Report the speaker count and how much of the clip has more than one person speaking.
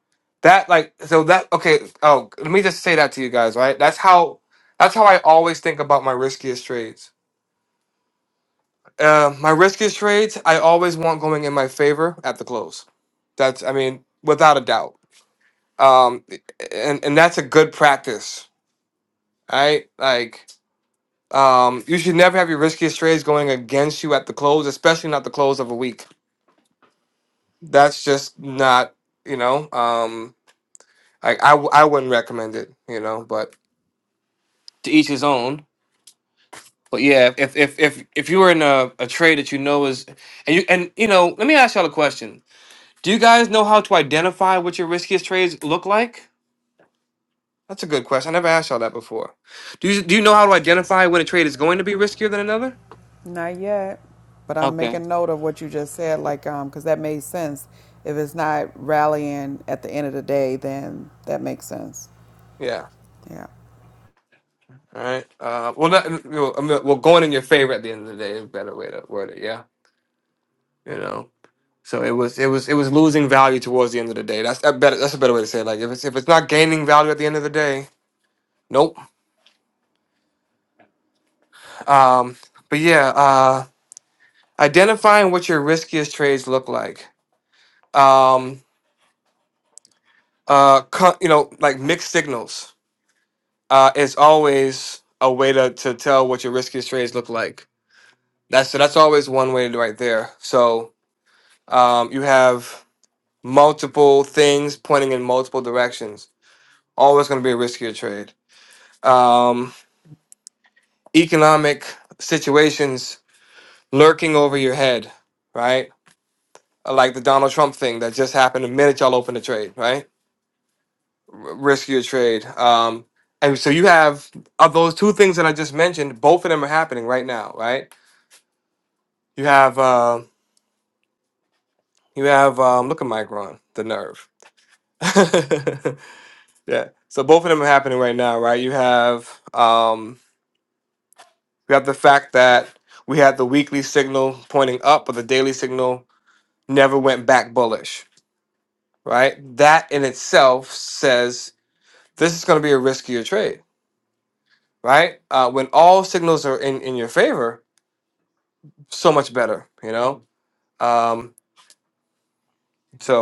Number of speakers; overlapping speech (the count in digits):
2, under 1%